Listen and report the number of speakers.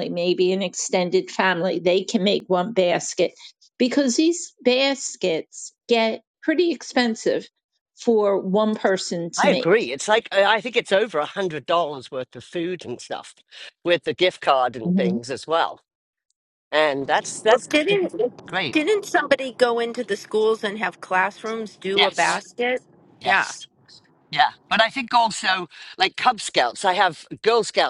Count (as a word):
three